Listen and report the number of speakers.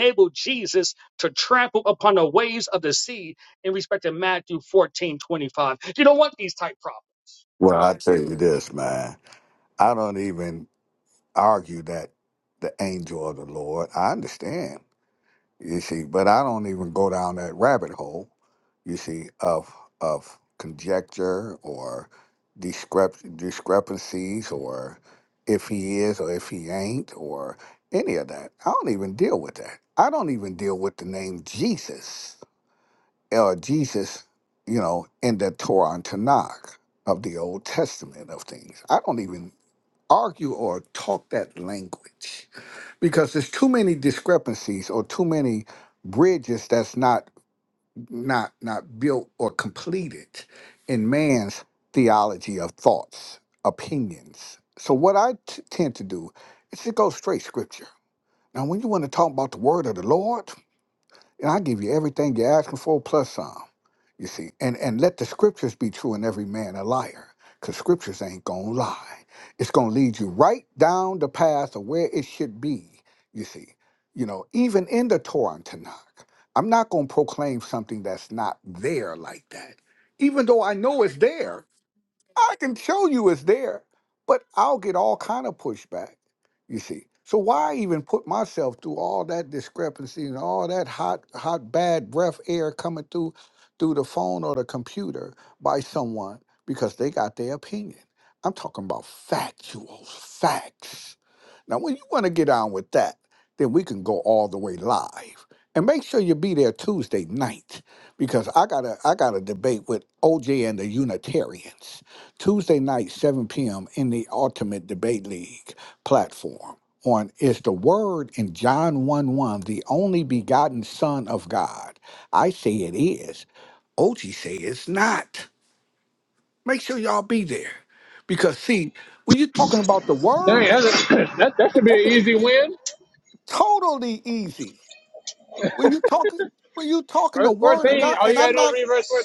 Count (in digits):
3